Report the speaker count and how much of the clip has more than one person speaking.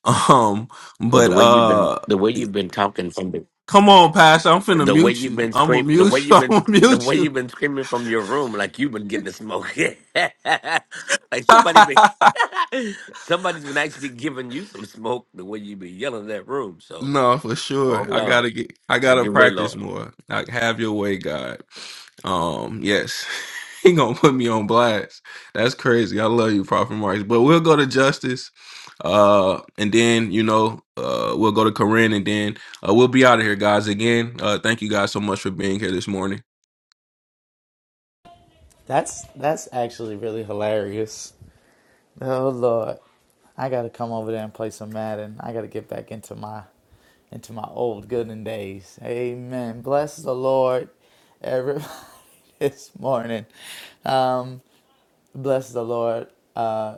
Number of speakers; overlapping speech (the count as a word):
three, about 9%